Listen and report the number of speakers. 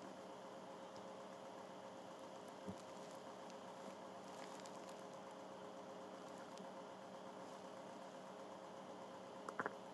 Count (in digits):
0